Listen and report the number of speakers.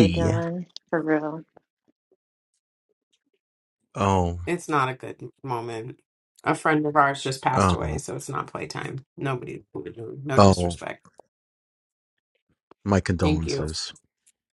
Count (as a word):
three